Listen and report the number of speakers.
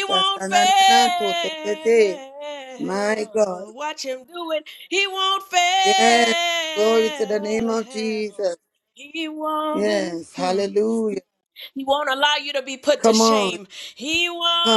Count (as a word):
two